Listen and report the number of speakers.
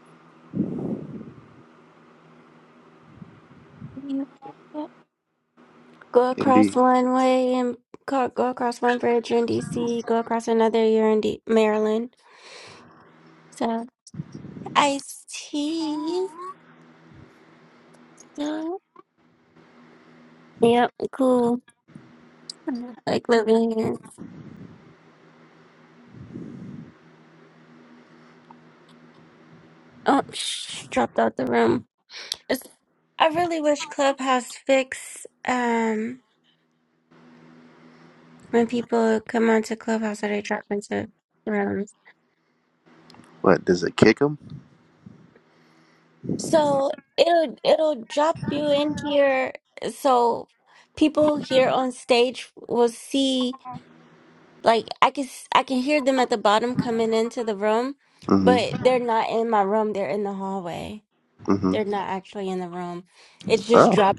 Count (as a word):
two